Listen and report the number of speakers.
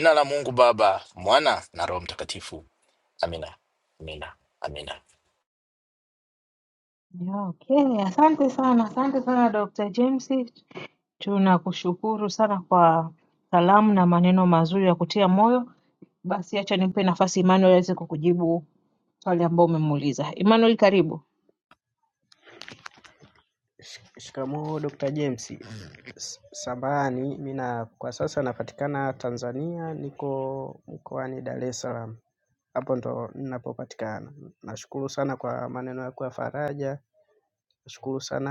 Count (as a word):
three